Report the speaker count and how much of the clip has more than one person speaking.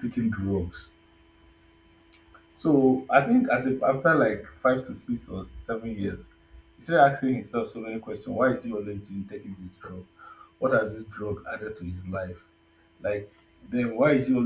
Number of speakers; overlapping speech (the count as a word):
one, no overlap